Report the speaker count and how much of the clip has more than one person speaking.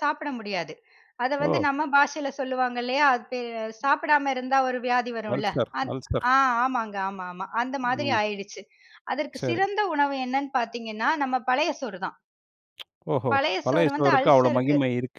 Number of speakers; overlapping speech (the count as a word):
two, about 19%